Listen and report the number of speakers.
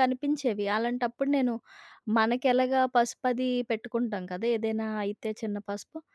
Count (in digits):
1